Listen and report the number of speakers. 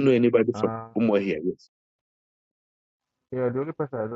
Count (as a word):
two